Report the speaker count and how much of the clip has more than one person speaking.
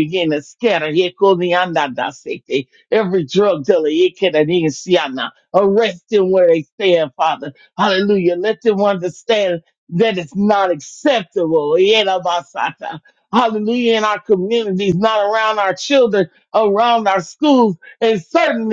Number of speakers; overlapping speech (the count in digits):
1, no overlap